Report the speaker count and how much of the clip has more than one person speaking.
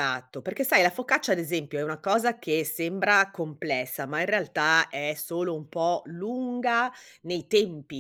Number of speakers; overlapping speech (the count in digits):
1, no overlap